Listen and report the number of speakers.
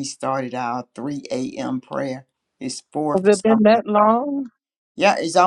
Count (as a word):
two